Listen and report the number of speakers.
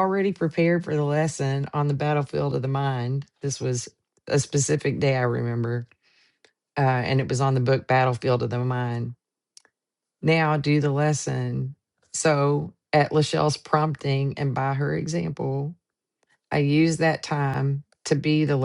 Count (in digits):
1